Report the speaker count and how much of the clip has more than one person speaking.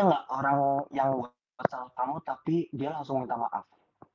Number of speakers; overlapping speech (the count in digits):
1, no overlap